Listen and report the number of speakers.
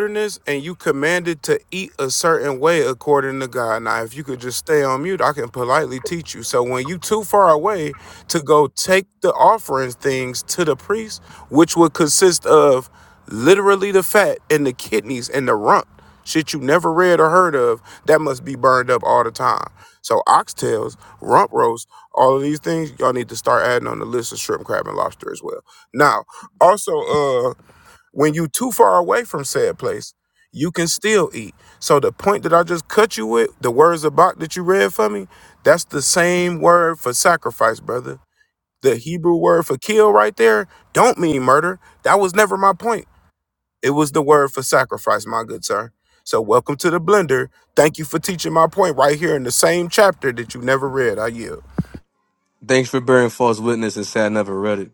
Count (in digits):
2